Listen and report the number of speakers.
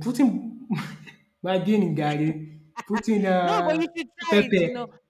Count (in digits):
2